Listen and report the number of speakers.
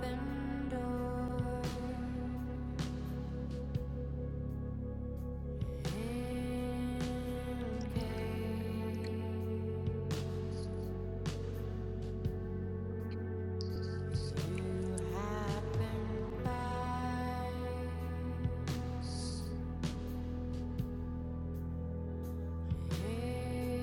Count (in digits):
0